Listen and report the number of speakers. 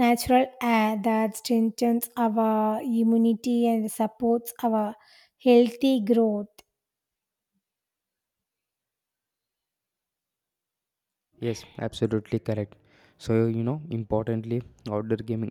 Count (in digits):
2